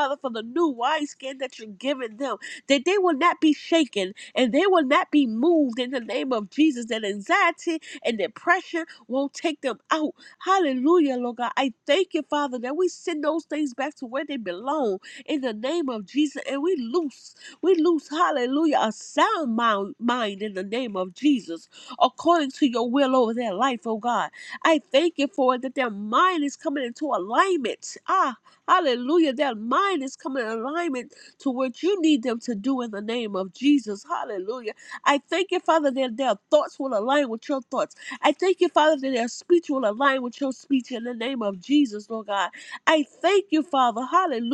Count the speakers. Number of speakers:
one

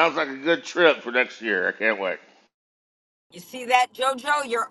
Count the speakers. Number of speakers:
two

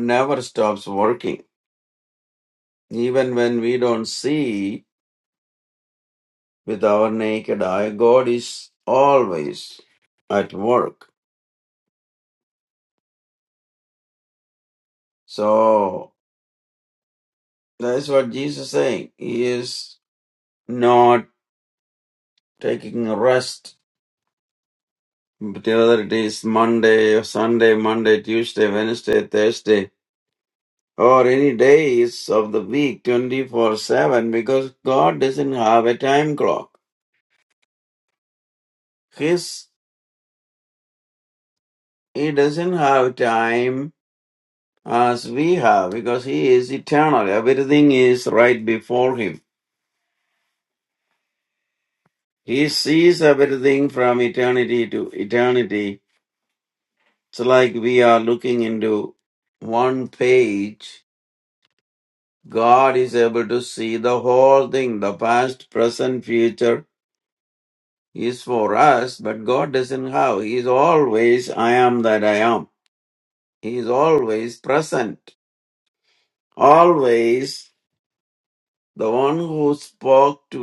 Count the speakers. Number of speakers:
one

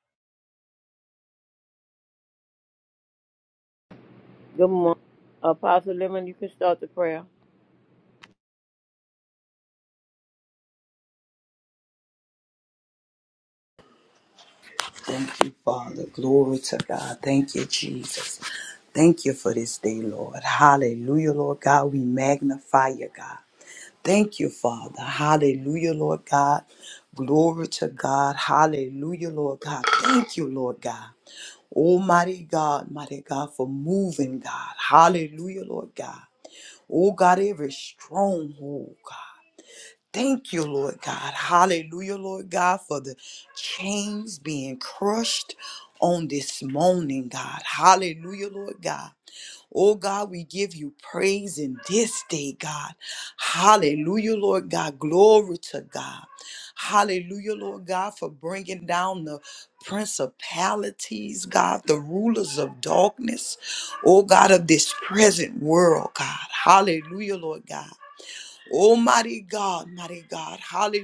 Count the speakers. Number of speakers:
two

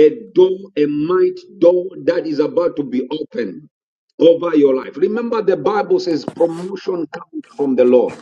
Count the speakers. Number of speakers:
one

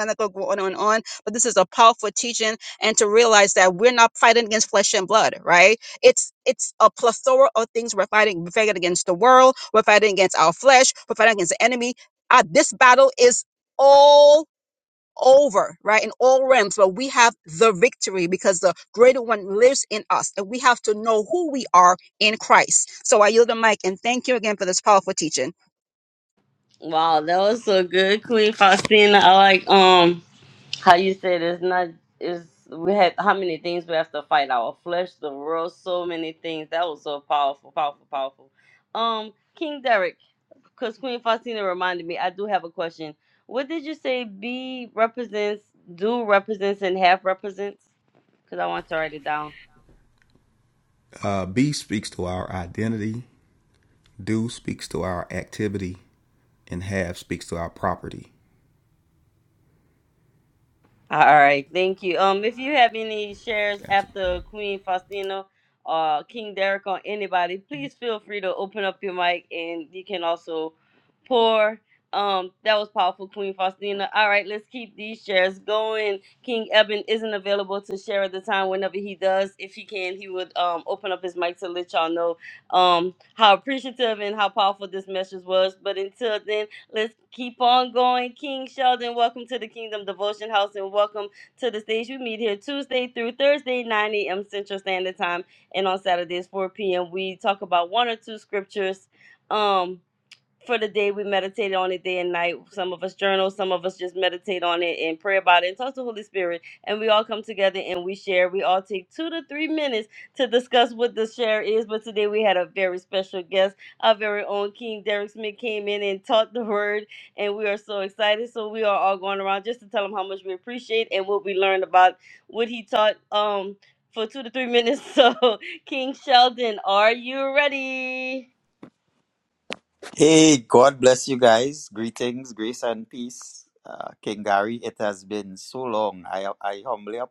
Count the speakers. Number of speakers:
four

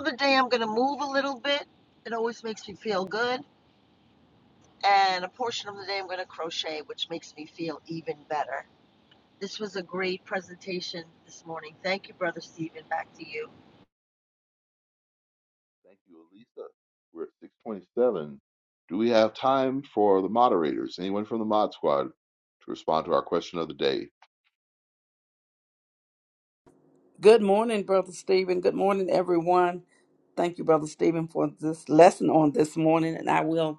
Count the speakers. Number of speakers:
three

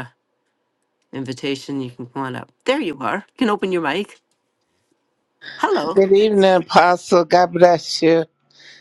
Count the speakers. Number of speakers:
two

